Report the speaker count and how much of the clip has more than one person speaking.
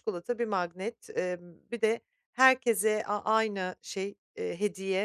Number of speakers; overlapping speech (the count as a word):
one, no overlap